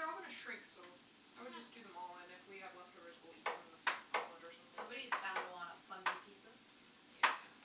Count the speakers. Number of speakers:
two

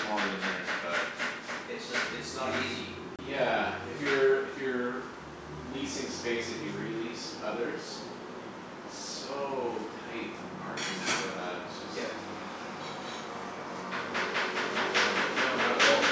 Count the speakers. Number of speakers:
two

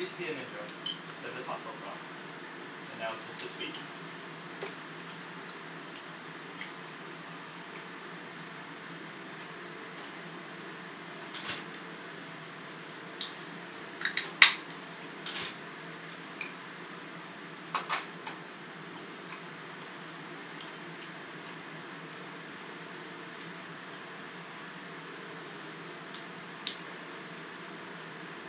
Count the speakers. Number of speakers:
one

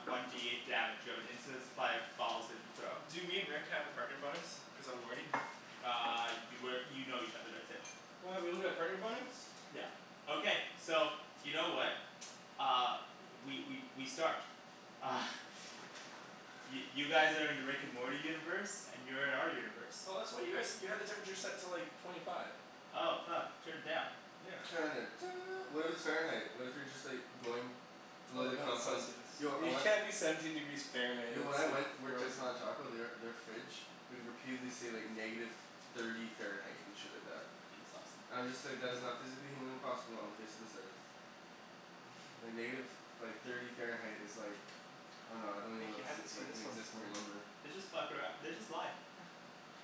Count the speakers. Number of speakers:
three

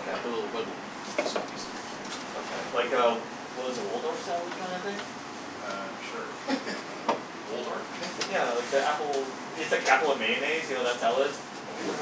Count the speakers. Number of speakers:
two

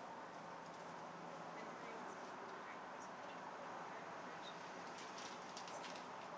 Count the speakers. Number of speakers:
one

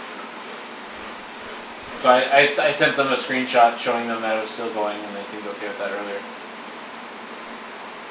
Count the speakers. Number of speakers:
one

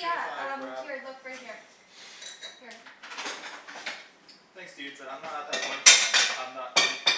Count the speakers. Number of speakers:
two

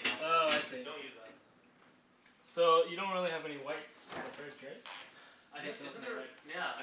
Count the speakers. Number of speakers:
two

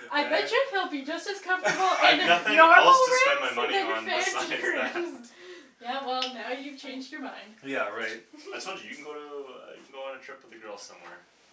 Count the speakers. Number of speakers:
three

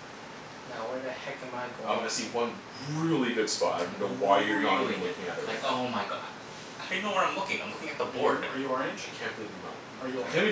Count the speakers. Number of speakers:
four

